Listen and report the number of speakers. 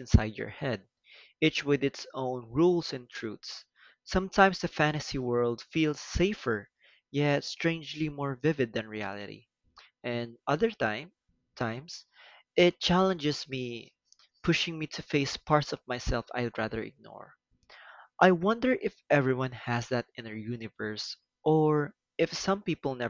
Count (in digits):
1